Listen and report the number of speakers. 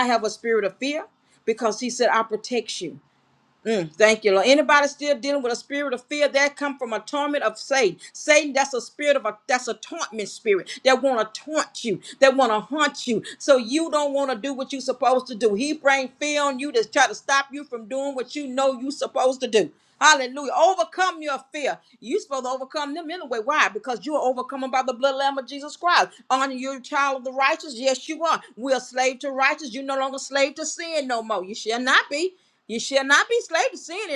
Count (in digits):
1